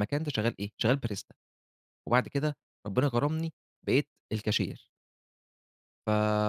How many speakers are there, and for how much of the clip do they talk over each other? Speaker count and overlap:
1, no overlap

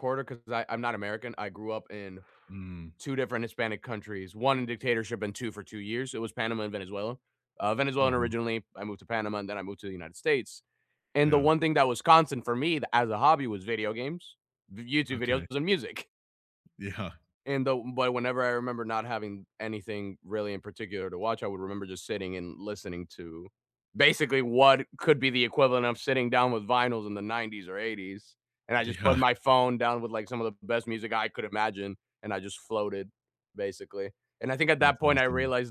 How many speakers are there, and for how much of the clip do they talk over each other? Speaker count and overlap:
2, about 6%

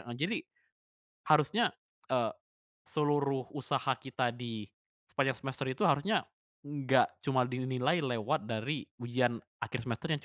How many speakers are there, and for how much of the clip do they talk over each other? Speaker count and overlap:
1, no overlap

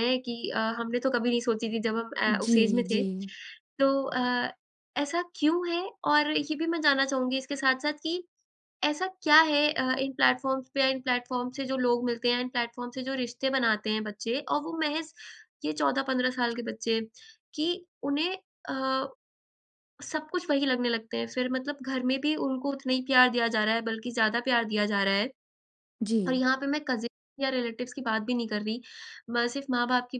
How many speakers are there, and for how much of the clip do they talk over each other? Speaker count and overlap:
2, about 3%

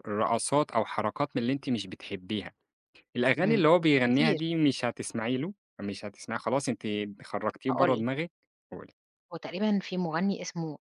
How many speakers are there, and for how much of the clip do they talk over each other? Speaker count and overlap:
2, about 7%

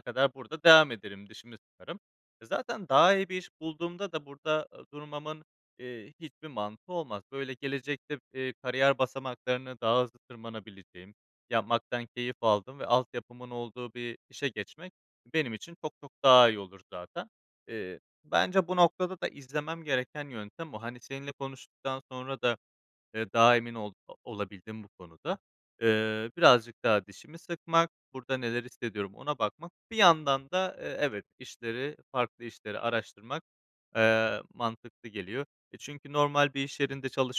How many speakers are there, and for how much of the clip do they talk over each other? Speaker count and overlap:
1, no overlap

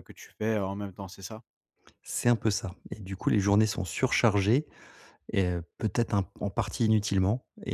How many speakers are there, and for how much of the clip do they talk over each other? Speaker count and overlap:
2, no overlap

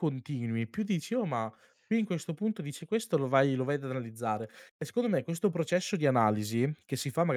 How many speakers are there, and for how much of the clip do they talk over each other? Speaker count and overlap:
1, no overlap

